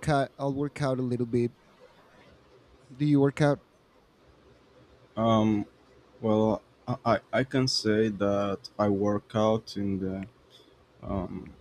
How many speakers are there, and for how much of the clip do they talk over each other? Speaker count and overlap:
two, no overlap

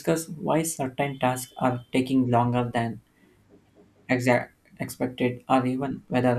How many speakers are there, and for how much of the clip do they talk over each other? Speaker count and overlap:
one, no overlap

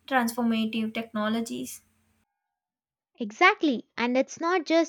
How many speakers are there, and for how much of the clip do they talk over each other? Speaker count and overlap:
two, no overlap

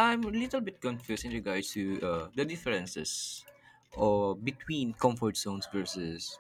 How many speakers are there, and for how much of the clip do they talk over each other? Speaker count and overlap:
one, no overlap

